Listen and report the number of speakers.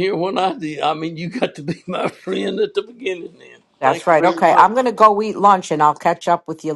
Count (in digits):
2